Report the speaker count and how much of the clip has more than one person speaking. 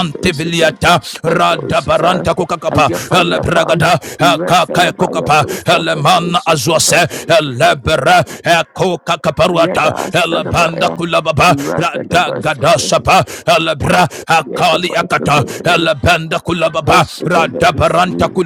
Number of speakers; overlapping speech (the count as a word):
two, about 57%